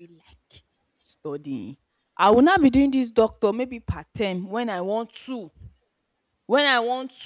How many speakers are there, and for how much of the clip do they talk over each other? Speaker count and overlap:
1, no overlap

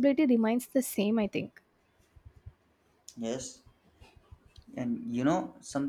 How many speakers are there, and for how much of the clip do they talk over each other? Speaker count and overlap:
2, no overlap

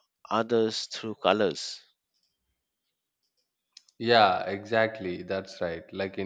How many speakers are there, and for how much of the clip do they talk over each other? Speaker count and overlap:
2, no overlap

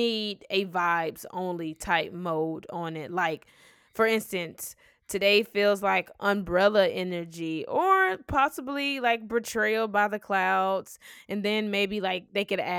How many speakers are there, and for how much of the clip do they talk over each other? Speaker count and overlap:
1, no overlap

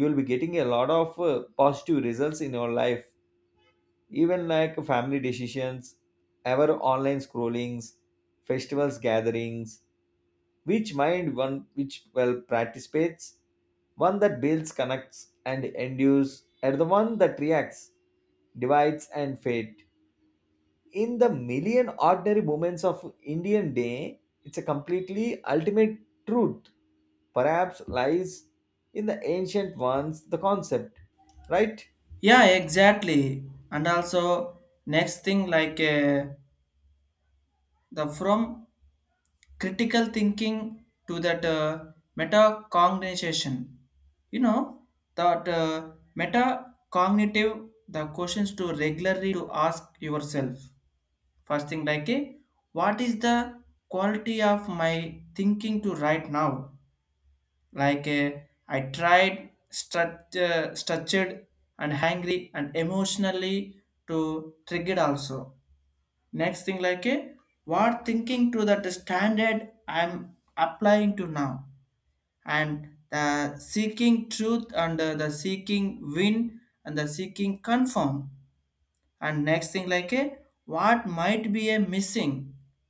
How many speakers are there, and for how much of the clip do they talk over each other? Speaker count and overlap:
2, no overlap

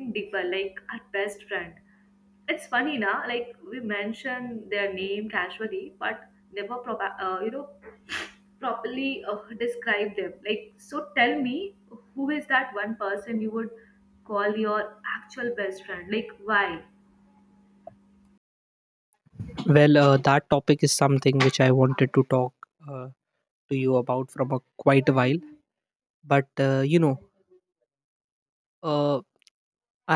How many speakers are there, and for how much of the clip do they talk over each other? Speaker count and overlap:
2, no overlap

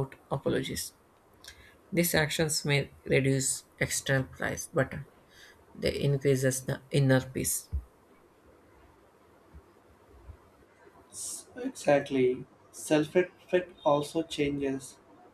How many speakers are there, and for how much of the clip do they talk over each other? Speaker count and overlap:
2, no overlap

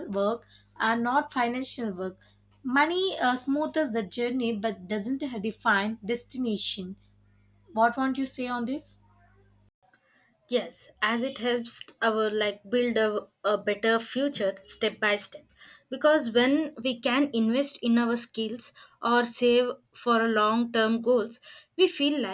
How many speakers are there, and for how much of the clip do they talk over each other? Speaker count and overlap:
2, no overlap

